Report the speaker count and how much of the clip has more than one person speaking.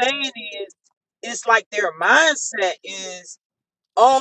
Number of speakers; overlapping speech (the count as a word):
one, no overlap